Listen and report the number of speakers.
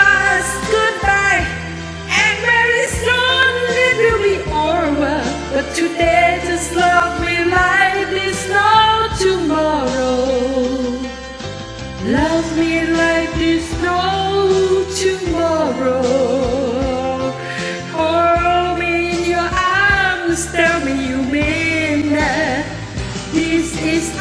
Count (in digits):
1